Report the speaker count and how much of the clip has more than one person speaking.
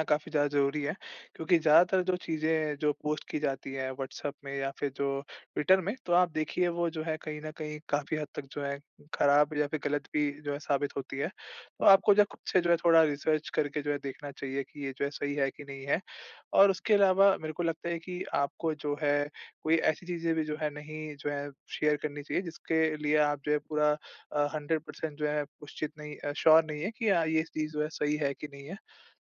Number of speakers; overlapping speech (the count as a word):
one, no overlap